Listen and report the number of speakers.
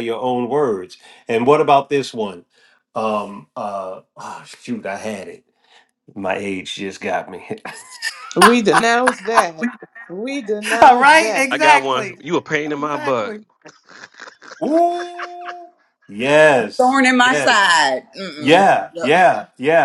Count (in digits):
4